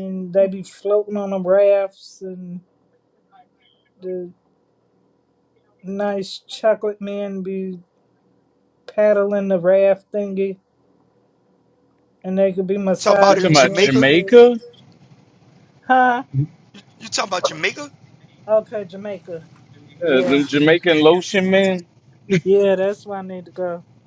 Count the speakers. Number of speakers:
3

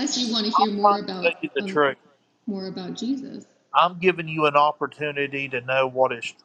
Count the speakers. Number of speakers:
2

